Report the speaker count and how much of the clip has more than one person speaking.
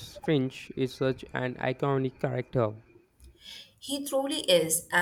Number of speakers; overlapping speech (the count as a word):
two, no overlap